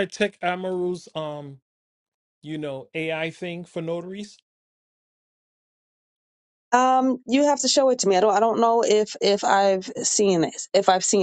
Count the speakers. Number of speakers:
2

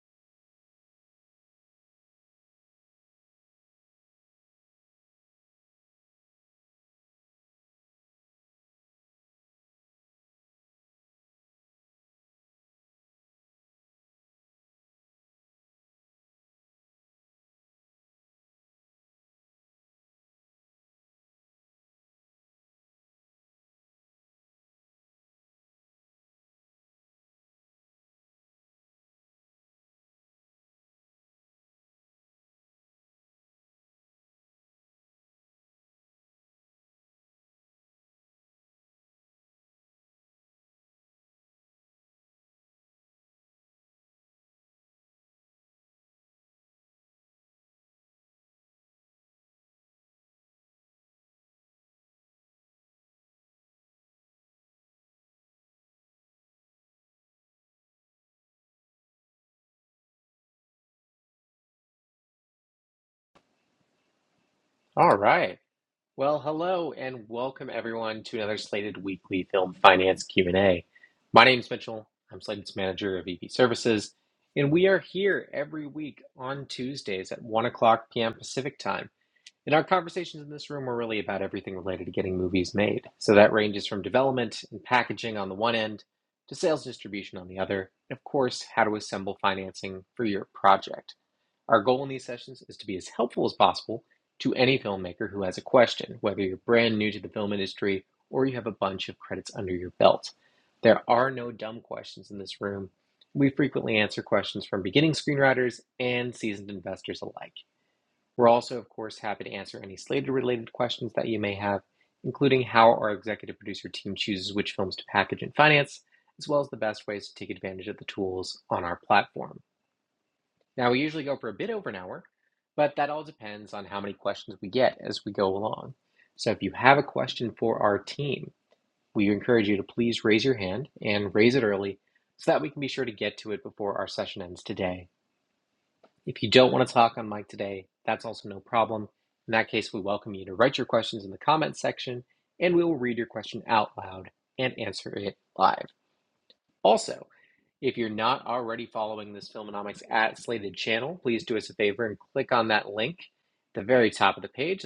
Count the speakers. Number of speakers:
1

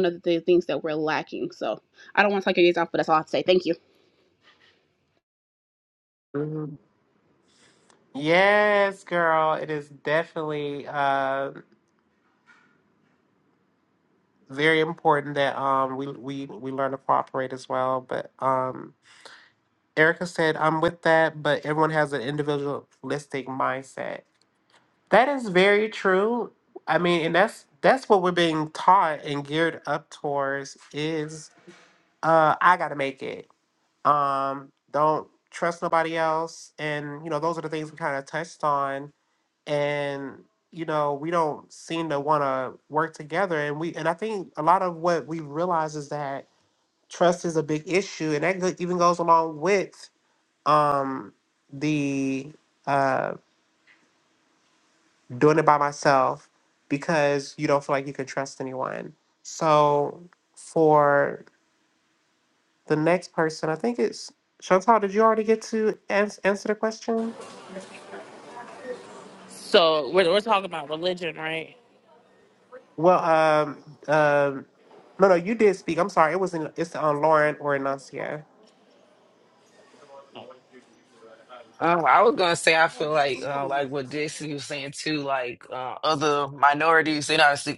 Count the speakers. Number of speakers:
4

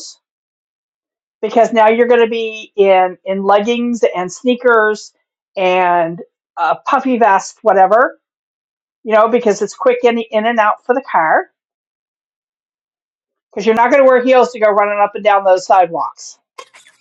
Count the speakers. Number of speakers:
1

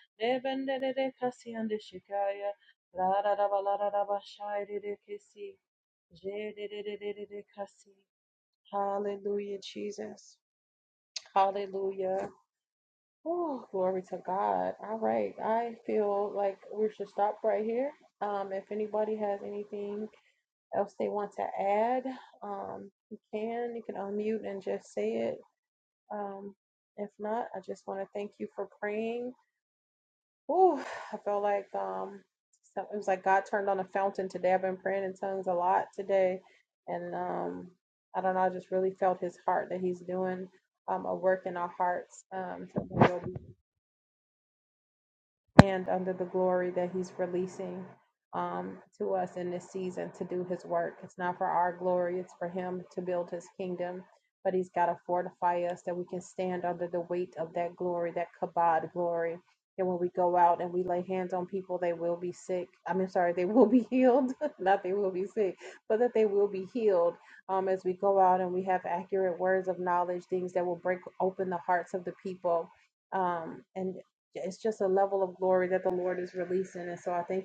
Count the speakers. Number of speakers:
1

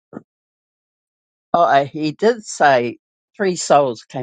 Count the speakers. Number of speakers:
1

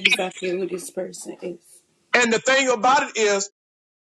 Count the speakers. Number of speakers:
2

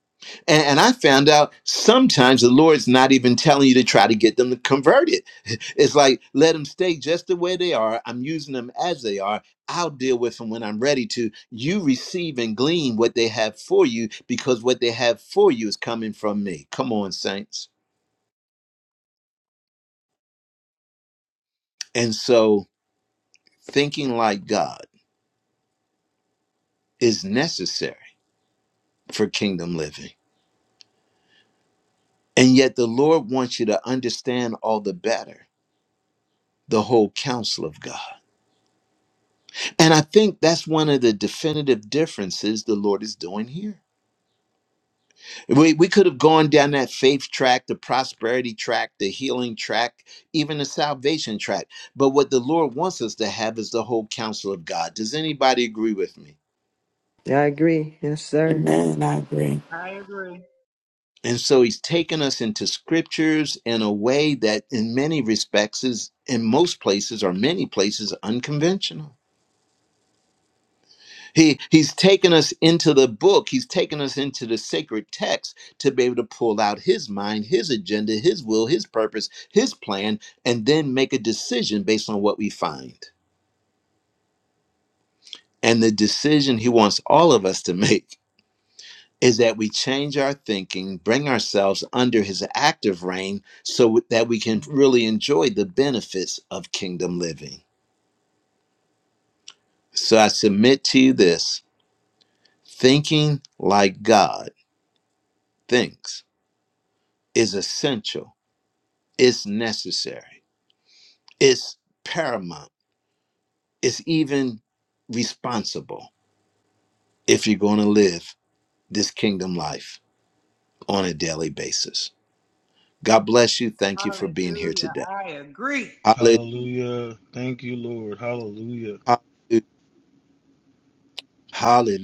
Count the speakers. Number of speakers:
5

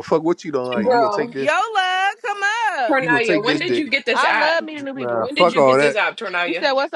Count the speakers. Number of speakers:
3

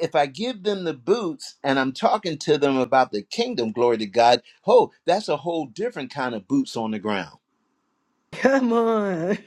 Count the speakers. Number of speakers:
2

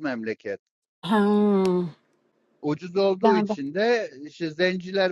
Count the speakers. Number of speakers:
2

